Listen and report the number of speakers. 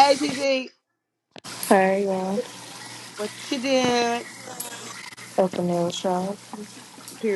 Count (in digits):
2